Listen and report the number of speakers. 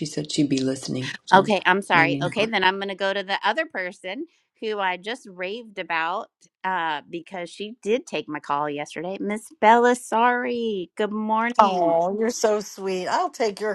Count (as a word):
three